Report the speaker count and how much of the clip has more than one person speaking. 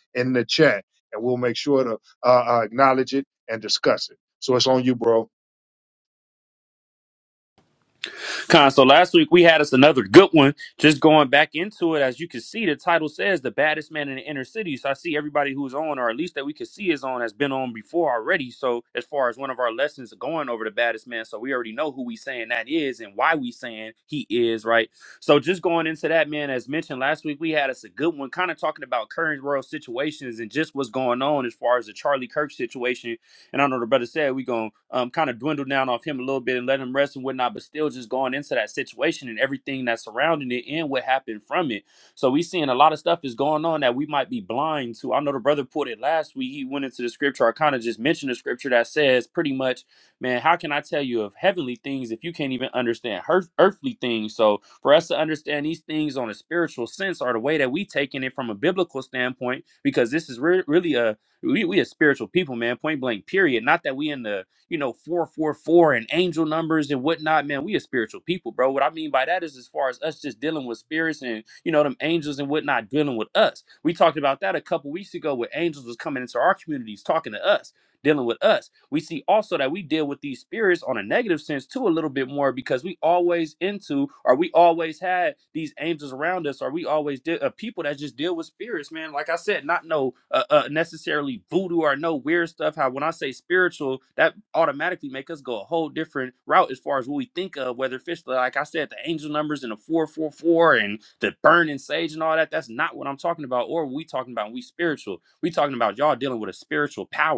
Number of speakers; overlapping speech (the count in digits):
2, no overlap